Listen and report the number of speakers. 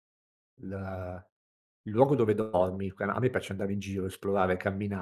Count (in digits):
1